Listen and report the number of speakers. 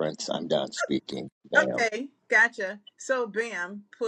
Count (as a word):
two